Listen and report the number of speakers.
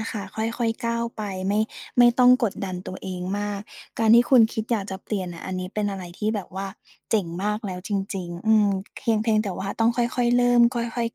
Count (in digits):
1